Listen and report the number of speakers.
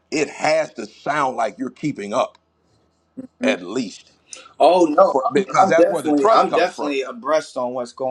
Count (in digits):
2